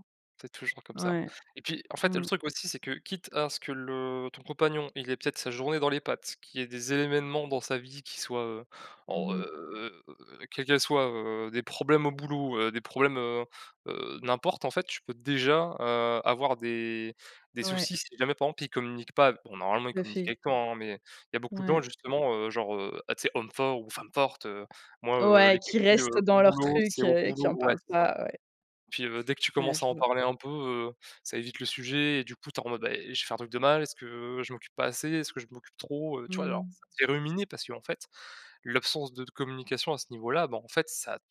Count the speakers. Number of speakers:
2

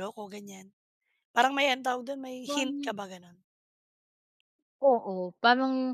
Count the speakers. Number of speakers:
2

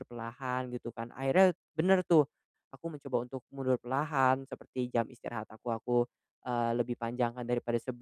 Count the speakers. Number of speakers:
1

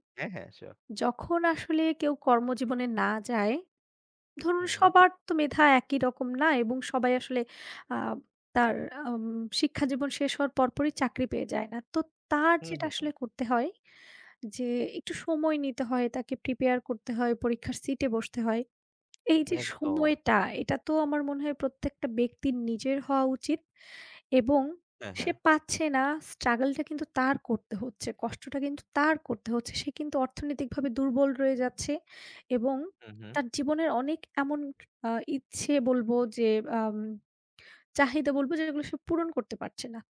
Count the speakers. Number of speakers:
2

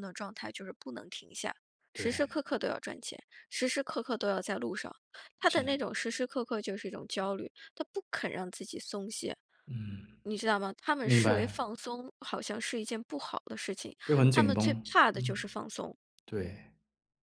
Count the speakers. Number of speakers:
2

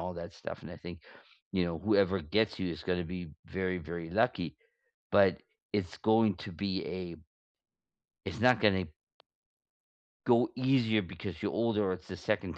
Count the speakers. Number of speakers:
1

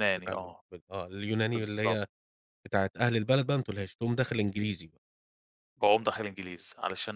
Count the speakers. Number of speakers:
2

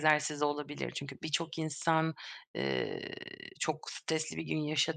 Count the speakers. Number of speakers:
1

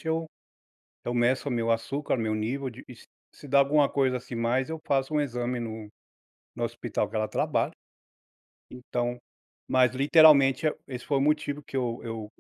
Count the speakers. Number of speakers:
1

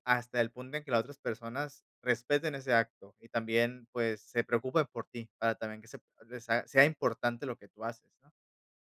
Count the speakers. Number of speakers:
1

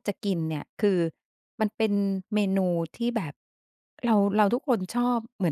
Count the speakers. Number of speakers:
1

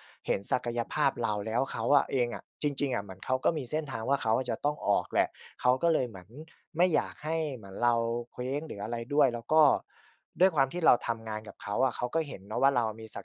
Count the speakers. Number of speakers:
1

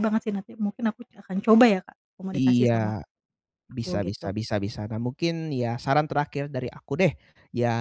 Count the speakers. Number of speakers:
2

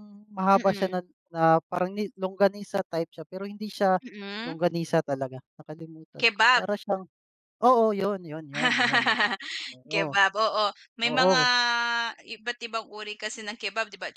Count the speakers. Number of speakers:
2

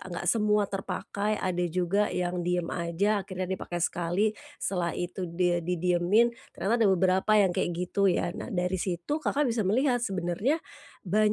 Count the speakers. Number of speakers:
1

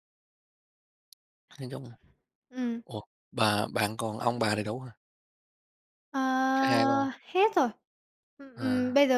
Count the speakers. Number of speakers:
2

